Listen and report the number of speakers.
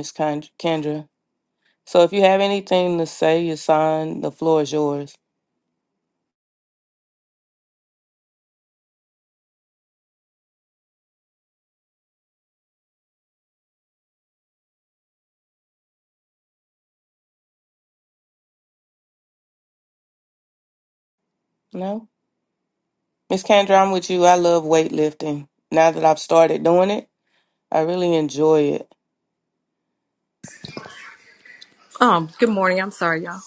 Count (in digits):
2